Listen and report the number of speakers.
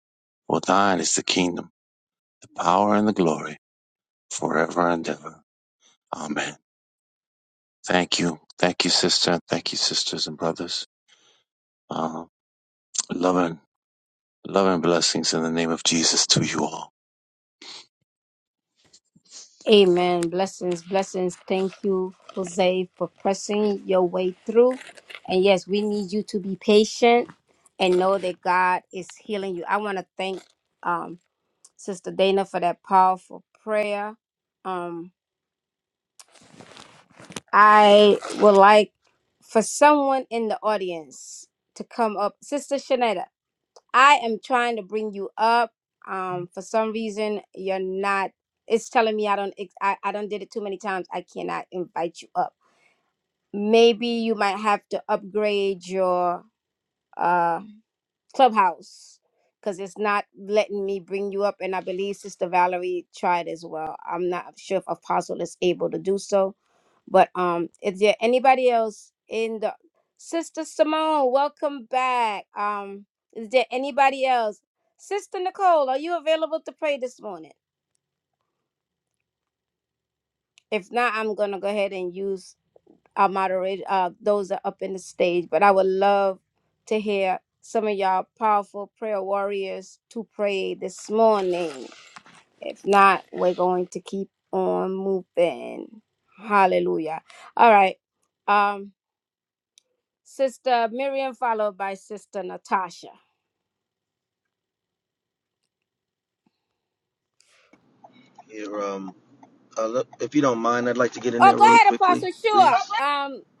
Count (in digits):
3